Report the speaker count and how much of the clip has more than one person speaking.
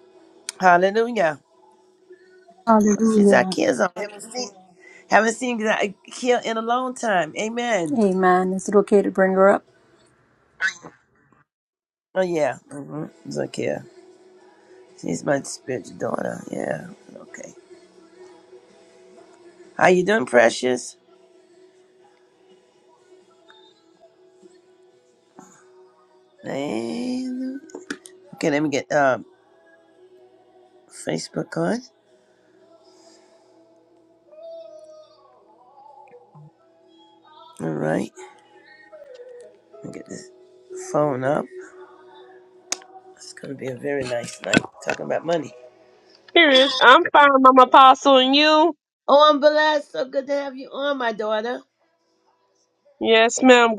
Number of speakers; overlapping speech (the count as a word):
three, about 1%